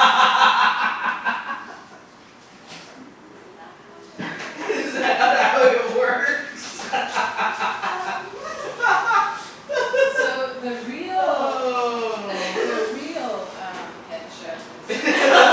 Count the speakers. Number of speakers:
three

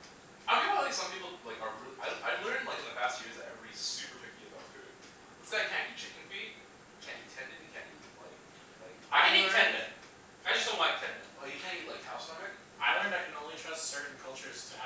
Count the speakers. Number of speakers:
three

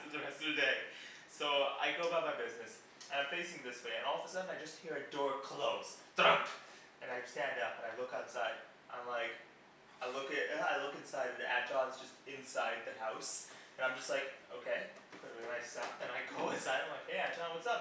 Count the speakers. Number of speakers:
one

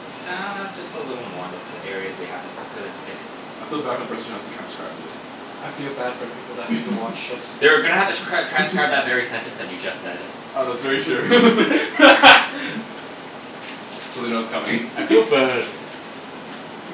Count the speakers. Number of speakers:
three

